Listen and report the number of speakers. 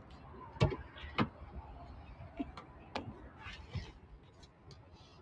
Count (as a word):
zero